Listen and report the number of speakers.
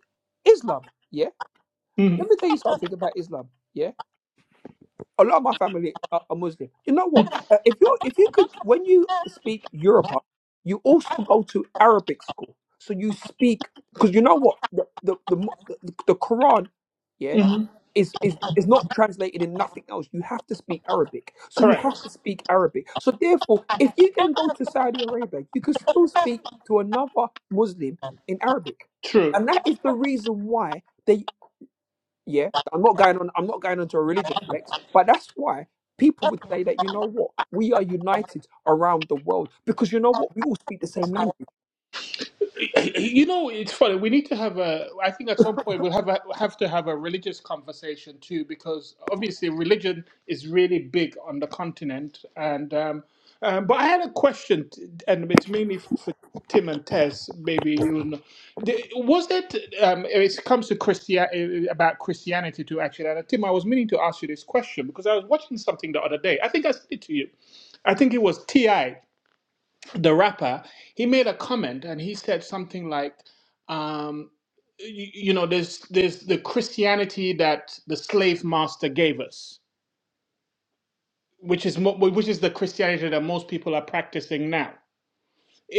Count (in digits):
2